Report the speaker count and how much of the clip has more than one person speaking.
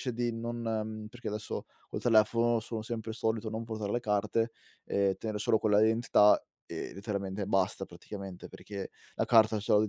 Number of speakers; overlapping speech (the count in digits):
1, no overlap